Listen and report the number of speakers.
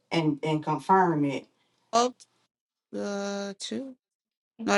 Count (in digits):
2